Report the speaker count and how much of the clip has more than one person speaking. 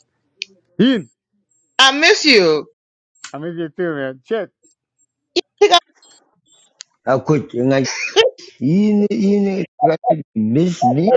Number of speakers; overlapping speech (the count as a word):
three, about 1%